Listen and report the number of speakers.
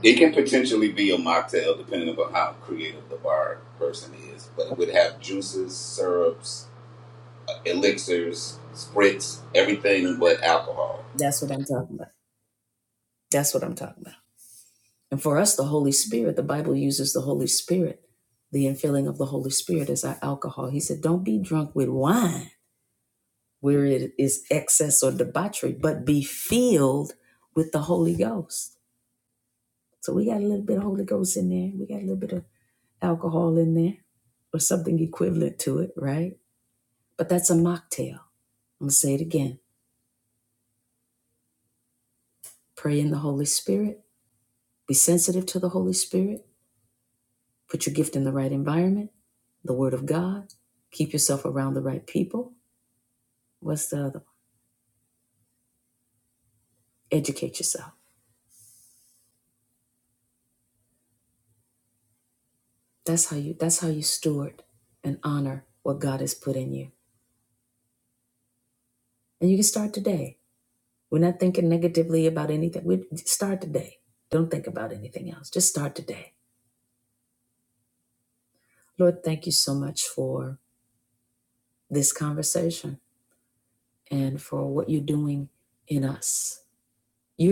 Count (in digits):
2